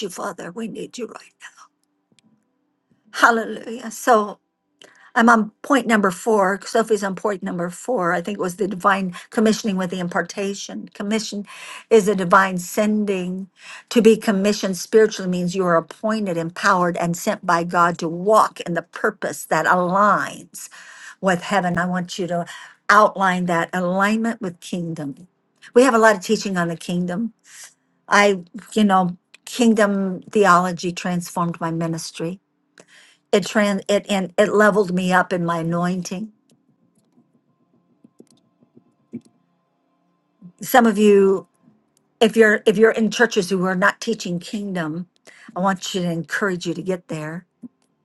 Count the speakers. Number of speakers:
one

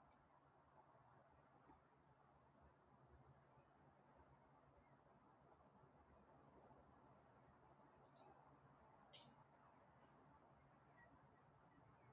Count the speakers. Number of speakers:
zero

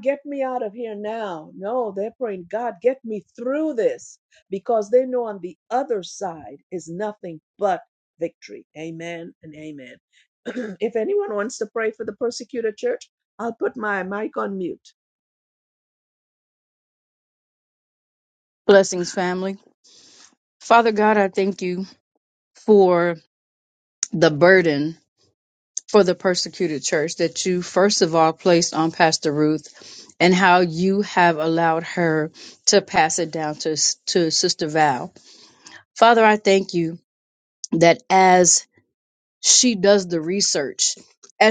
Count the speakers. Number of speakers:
two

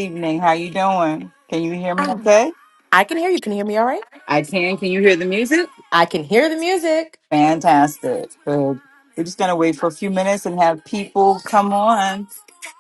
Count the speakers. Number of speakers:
two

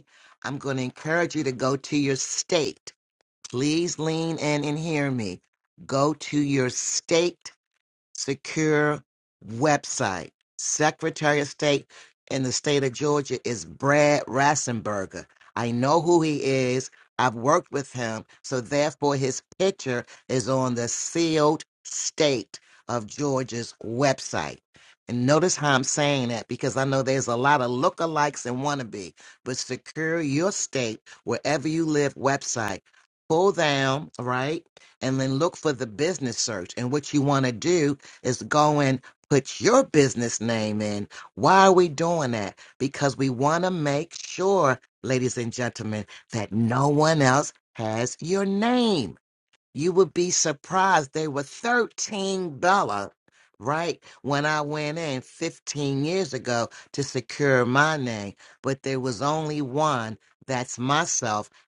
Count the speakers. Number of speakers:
one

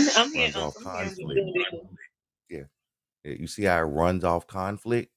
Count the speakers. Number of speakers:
two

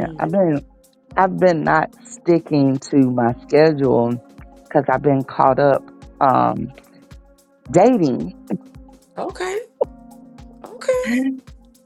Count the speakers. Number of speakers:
two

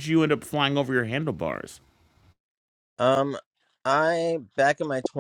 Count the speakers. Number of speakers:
two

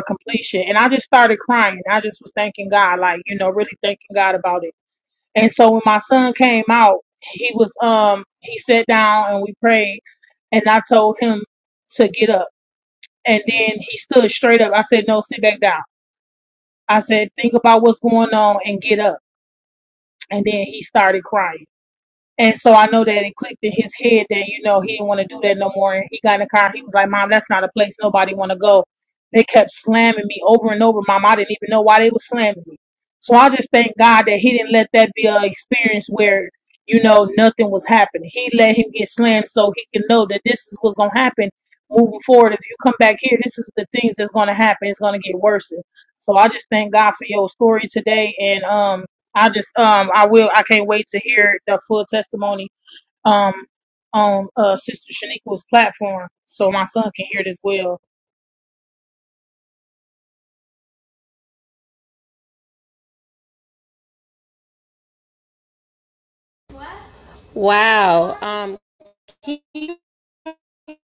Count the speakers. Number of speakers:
two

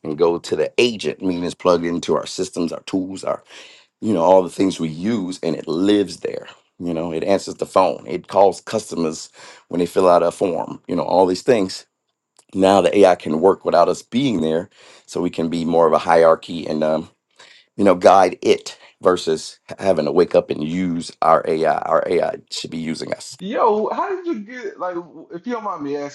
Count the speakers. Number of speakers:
two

